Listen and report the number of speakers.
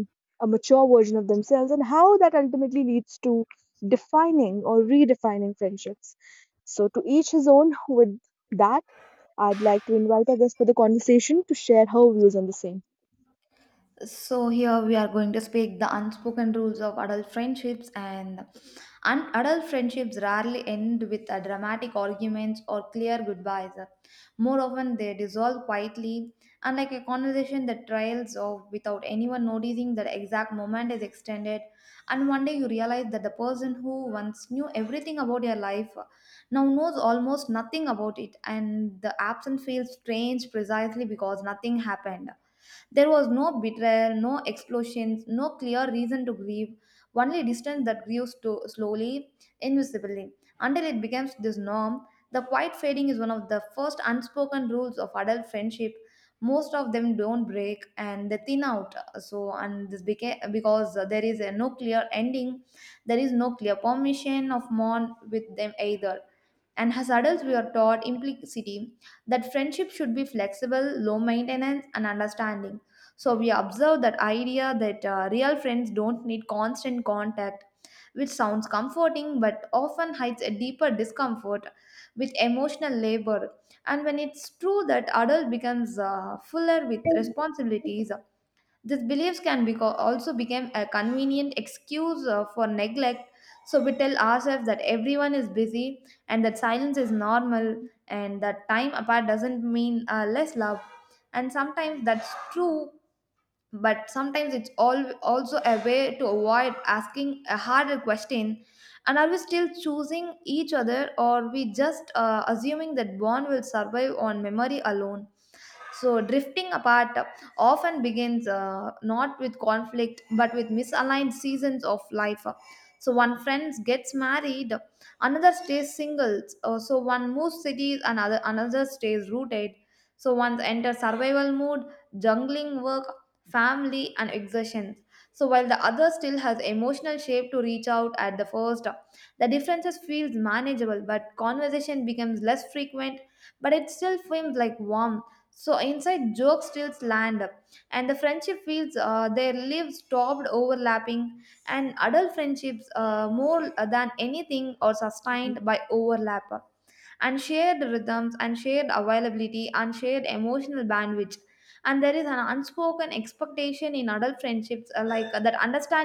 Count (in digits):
2